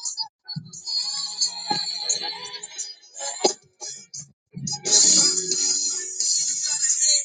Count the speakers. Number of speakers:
0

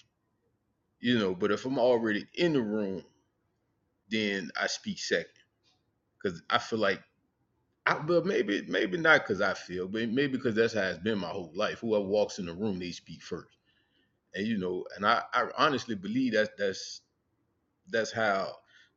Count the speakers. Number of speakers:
1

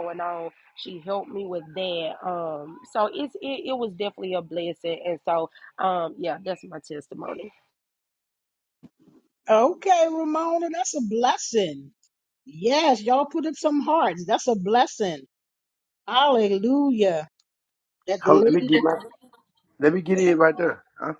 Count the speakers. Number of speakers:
3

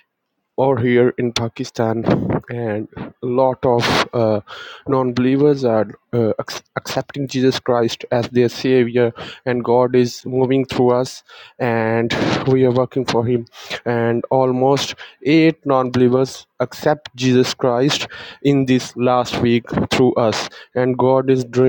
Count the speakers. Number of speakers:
1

